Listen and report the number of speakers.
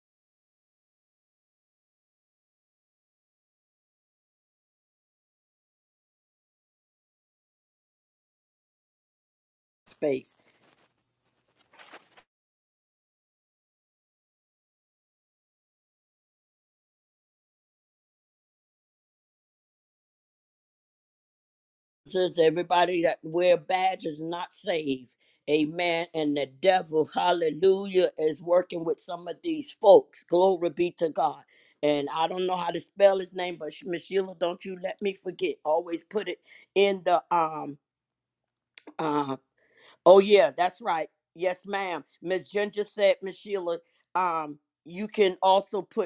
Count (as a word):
one